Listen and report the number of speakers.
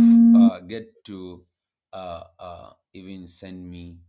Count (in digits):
1